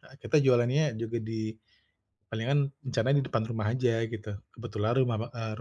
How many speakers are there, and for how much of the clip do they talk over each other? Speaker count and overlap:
1, no overlap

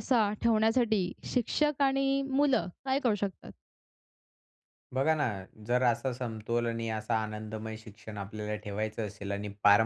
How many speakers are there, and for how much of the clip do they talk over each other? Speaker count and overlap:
2, no overlap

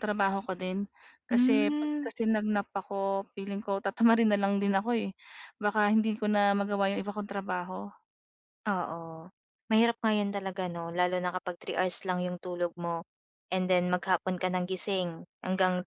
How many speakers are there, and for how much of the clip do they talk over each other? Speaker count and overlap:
2, about 5%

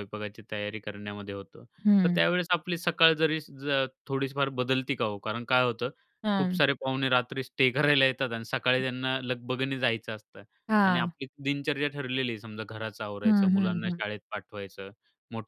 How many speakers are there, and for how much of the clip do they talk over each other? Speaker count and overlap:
2, about 9%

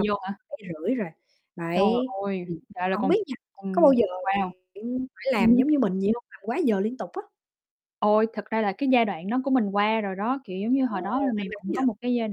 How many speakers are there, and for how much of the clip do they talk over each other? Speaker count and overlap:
2, about 20%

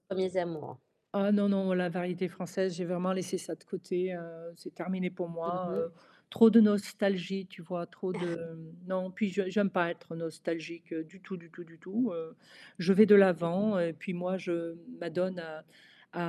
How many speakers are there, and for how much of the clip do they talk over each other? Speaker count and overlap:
2, about 3%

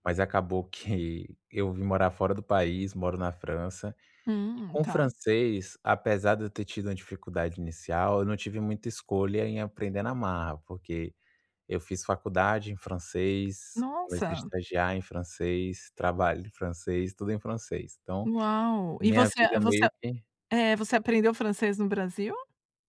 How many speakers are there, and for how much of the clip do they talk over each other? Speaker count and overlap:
2, about 9%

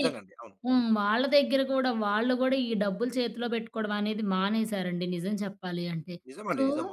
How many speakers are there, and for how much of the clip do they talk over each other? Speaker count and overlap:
2, about 3%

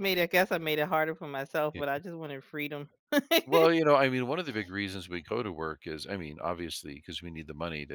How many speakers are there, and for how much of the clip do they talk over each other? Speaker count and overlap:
2, about 1%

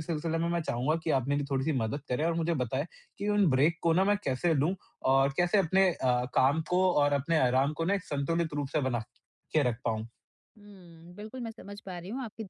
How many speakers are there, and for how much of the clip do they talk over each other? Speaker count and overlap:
2, no overlap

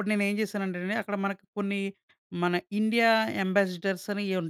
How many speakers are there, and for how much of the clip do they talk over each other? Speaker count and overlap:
1, no overlap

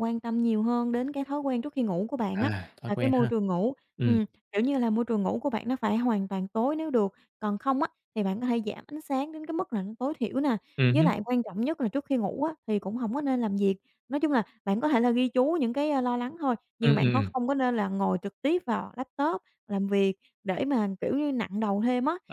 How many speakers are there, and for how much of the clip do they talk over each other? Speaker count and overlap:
2, about 7%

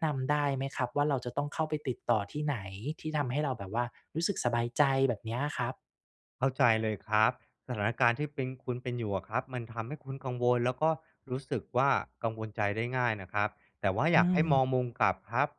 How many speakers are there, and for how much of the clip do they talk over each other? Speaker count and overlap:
2, about 3%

